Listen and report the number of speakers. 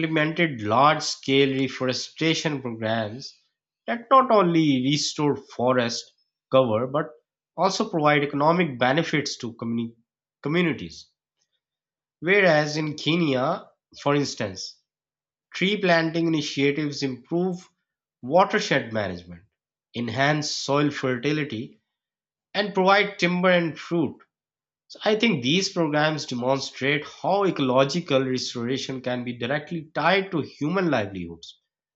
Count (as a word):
one